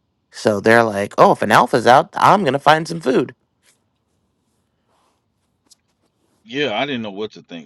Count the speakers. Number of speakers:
two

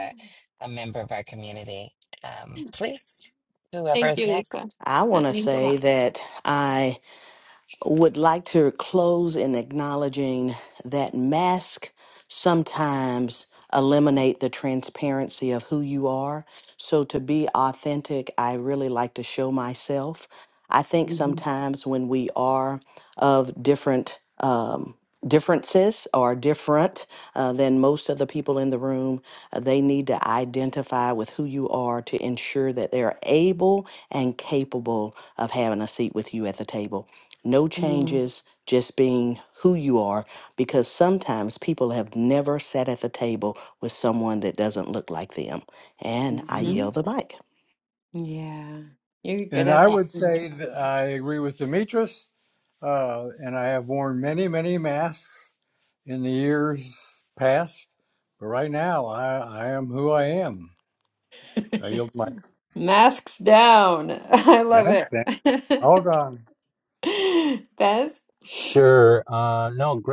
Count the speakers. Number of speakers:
five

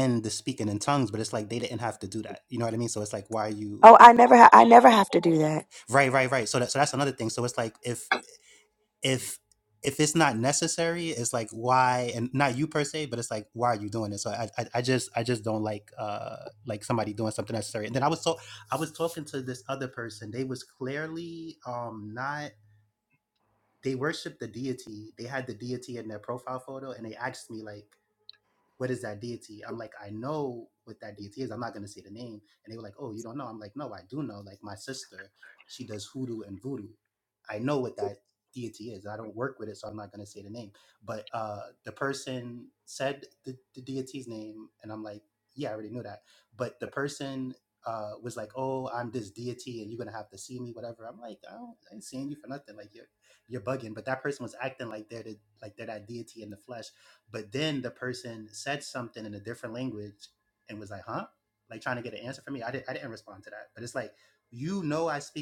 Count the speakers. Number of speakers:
two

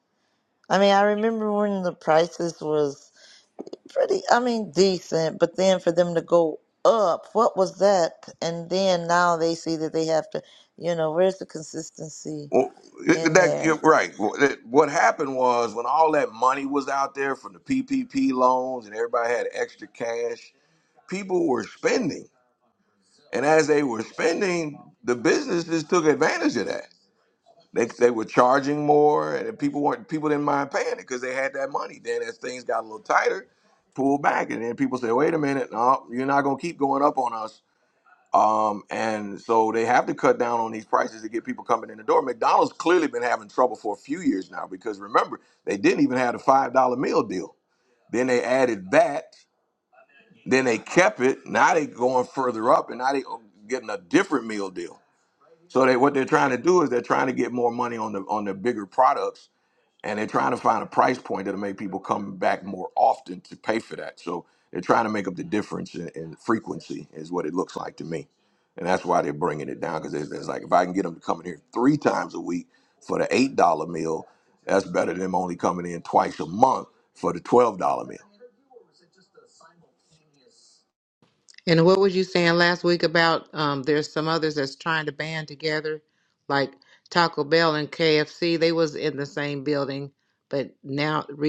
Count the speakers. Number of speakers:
three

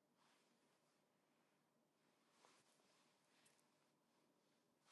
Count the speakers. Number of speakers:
zero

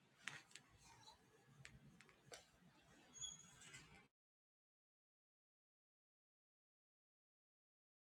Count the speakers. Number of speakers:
zero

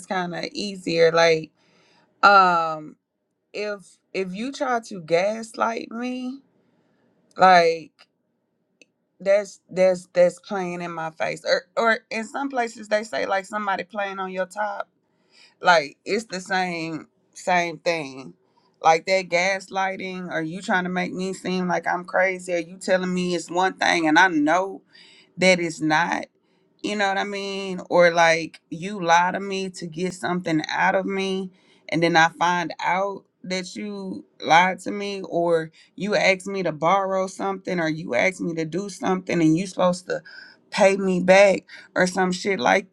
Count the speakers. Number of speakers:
one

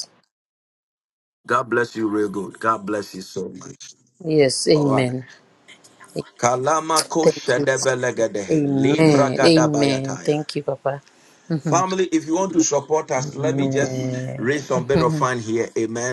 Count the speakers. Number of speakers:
two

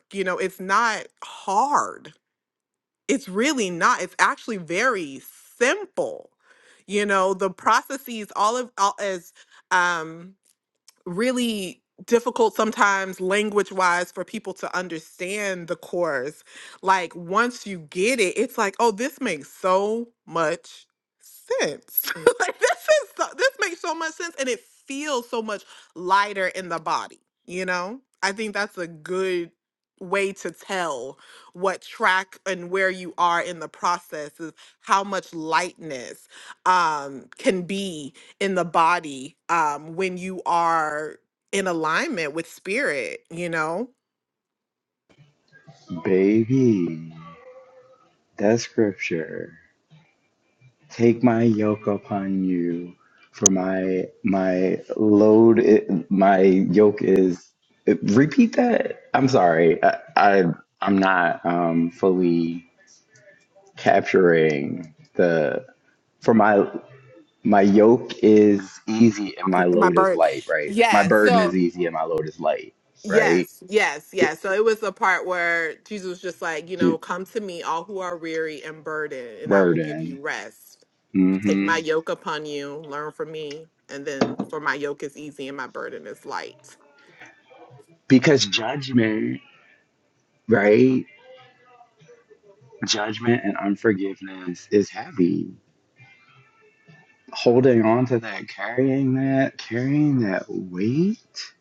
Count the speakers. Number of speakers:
two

